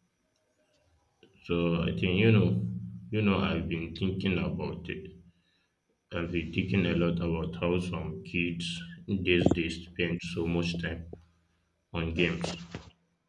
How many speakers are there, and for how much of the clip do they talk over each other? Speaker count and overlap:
1, no overlap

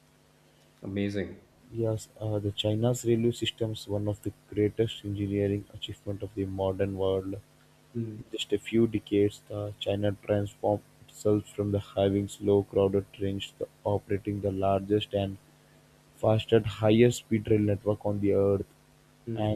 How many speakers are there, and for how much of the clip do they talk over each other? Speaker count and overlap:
2, about 1%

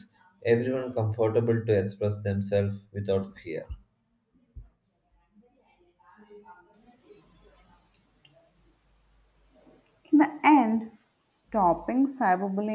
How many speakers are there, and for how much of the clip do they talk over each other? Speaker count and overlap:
2, no overlap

